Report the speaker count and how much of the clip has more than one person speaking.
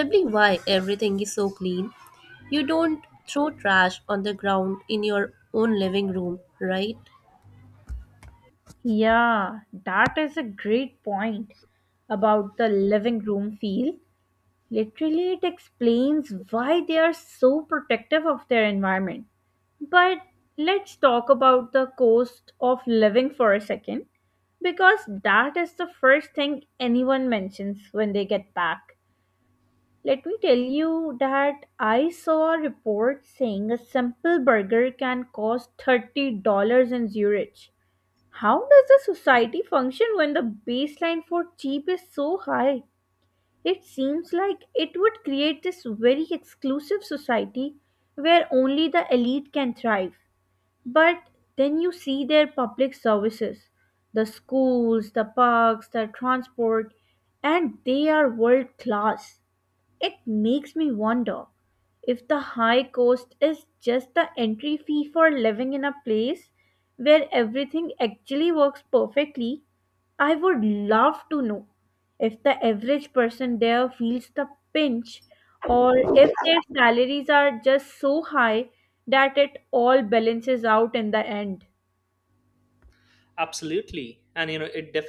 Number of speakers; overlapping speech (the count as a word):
three, no overlap